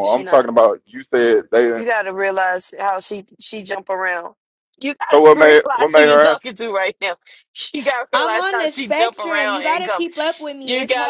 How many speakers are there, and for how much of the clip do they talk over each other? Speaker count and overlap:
three, about 37%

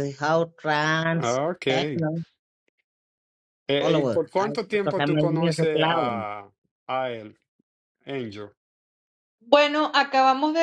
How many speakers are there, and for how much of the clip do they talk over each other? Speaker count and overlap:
three, about 27%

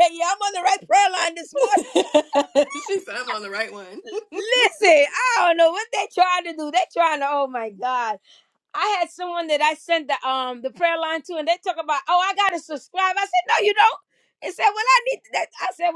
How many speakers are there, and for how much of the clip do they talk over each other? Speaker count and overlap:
two, about 1%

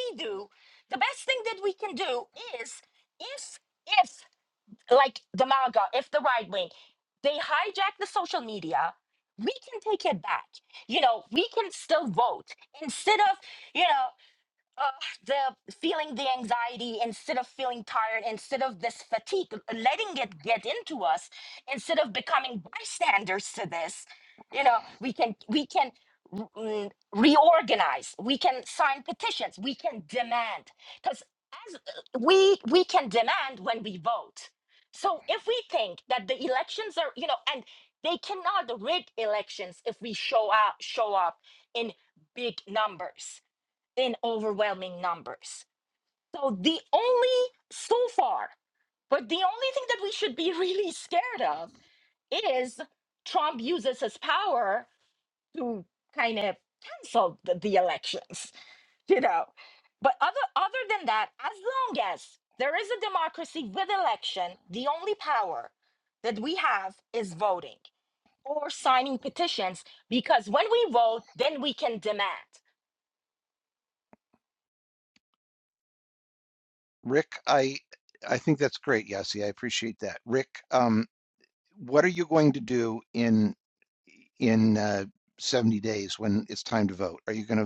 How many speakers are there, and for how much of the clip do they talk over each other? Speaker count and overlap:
two, no overlap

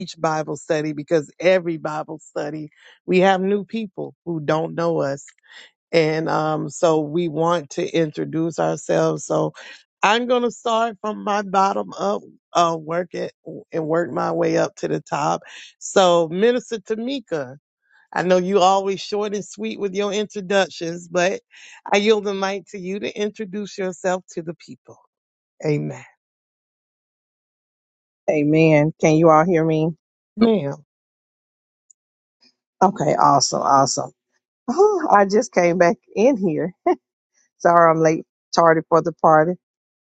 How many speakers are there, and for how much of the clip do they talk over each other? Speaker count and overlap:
two, no overlap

